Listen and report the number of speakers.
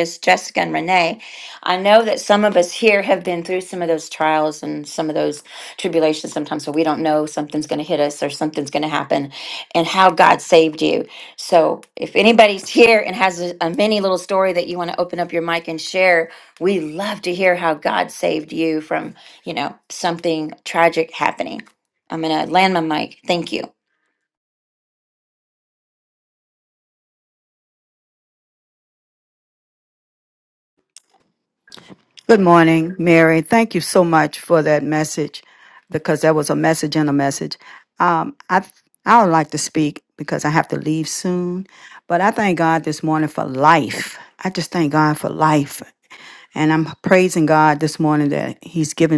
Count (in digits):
2